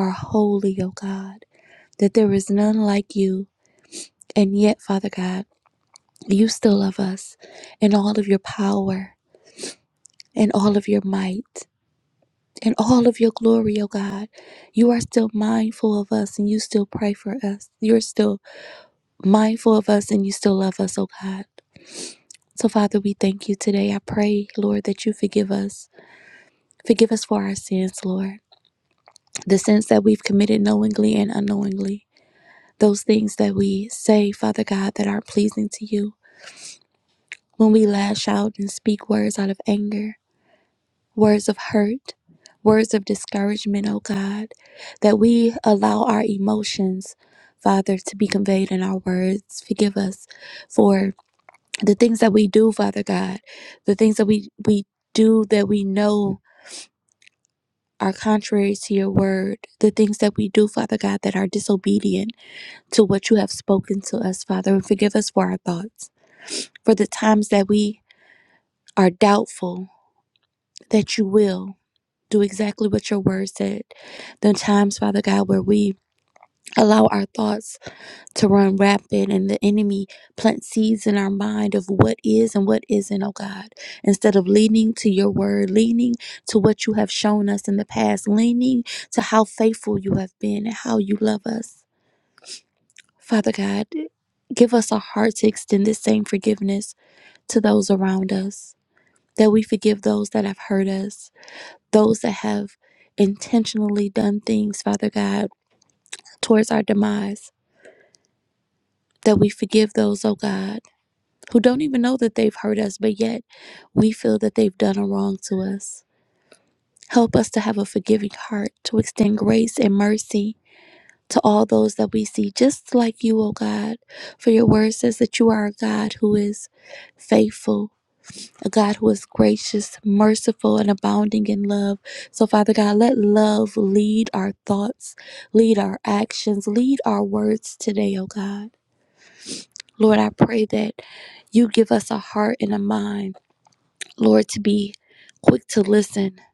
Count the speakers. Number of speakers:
1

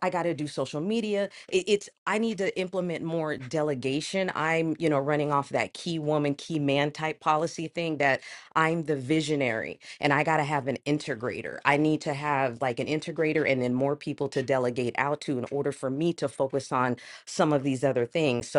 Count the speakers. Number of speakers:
1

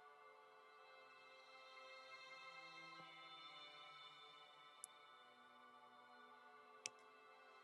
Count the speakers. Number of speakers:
0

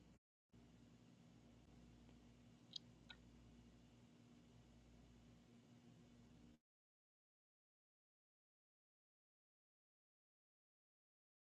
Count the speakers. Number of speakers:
0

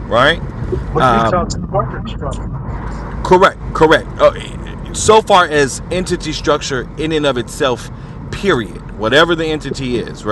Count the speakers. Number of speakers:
2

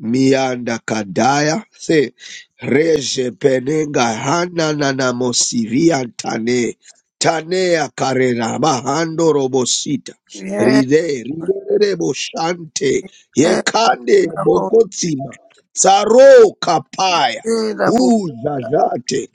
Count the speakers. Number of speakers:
2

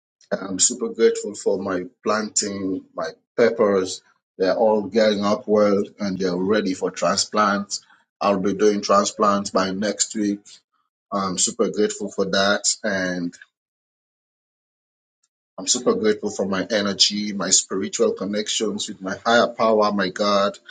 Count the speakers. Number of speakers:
1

